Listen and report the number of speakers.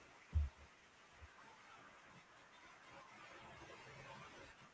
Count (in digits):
0